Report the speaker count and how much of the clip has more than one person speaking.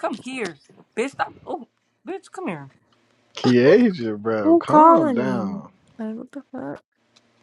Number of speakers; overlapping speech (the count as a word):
three, about 14%